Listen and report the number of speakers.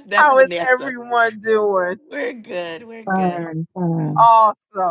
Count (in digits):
3